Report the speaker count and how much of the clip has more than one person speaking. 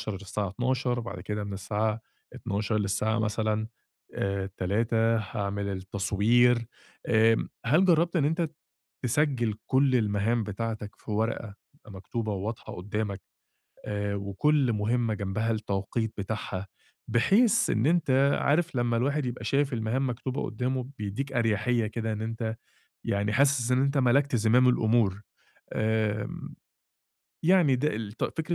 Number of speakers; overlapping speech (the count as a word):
one, no overlap